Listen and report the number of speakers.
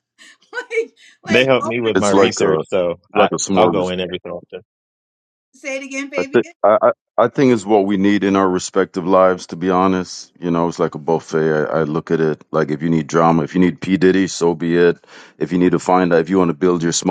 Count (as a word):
three